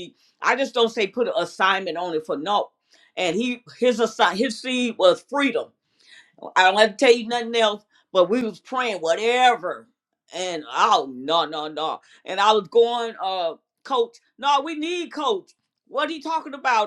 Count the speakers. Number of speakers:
1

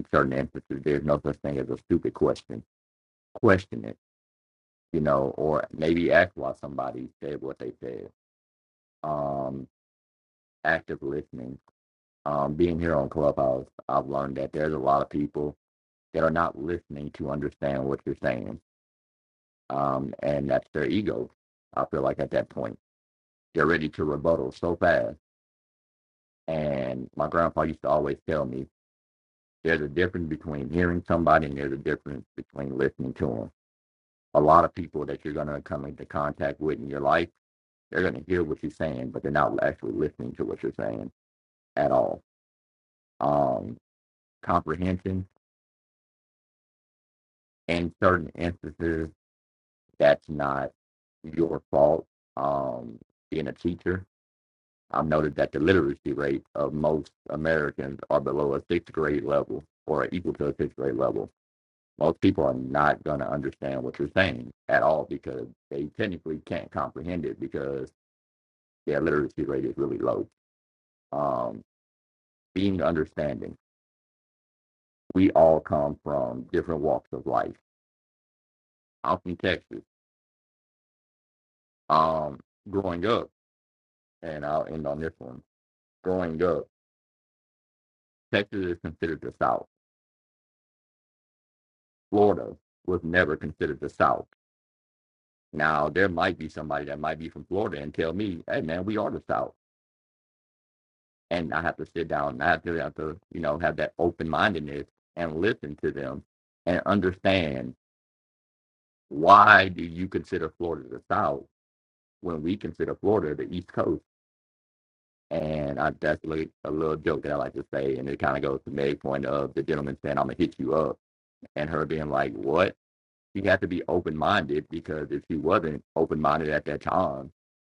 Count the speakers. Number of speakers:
1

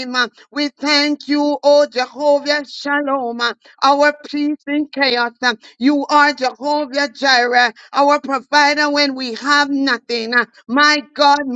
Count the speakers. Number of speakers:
1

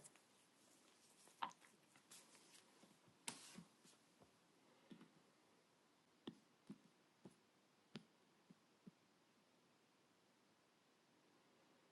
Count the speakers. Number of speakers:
0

